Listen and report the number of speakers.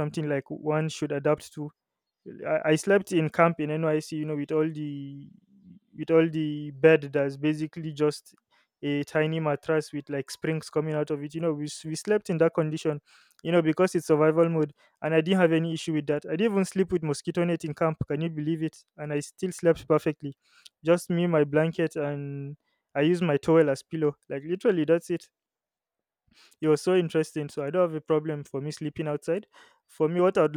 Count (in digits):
1